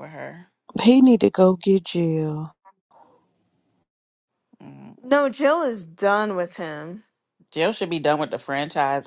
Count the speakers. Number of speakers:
three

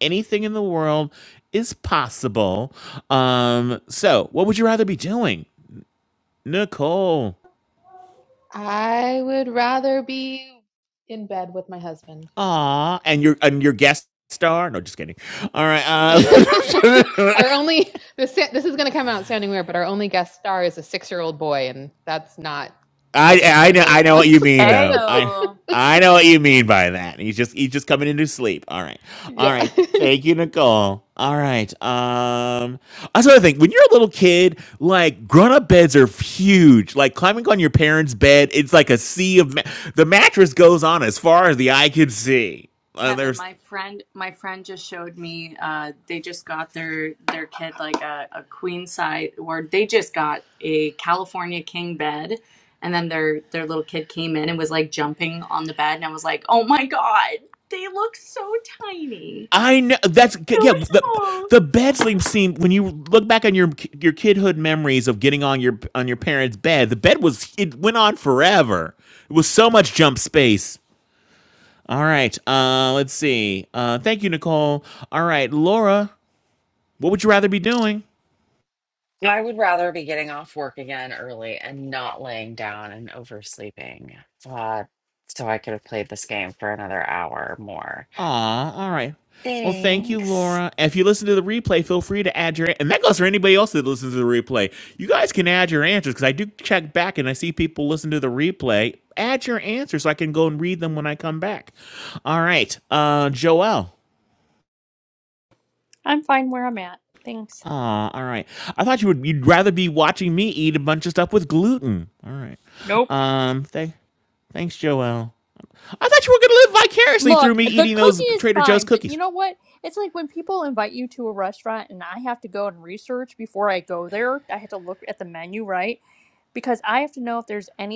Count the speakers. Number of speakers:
five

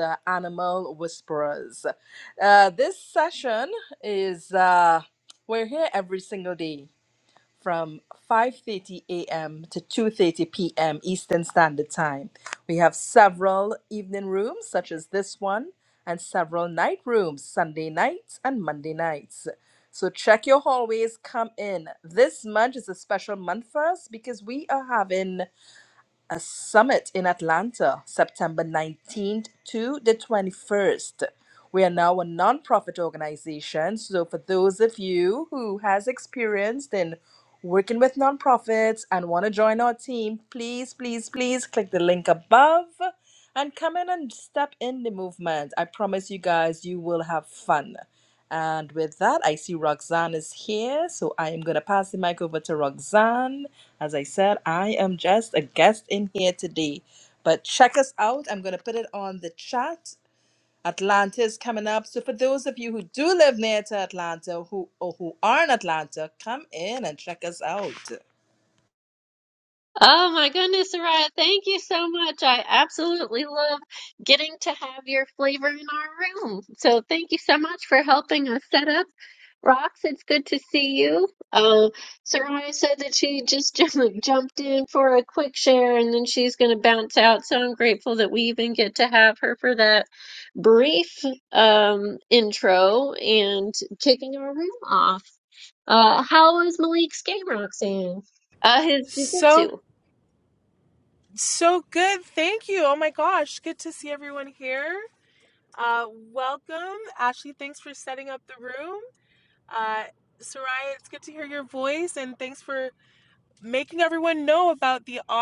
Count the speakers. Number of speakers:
three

